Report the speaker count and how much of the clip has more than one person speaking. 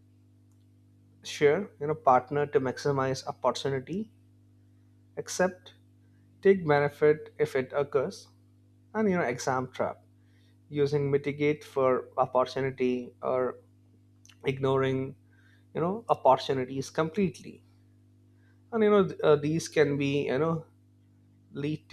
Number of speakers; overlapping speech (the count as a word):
one, no overlap